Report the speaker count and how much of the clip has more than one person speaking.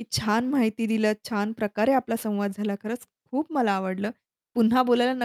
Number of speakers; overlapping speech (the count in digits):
1, no overlap